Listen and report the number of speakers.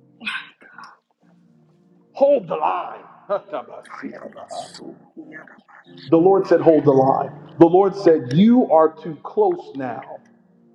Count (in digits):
2